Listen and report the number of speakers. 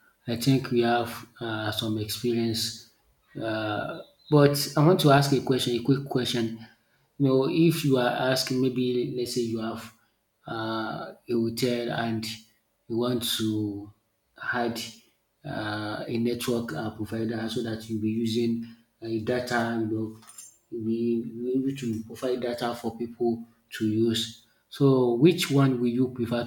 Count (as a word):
one